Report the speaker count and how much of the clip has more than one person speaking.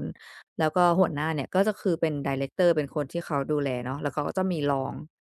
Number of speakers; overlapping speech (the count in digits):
1, no overlap